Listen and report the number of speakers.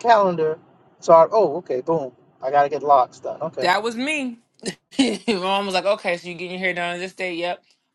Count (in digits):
2